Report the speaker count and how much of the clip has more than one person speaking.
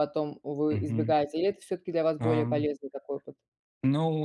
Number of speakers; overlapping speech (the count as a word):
two, about 20%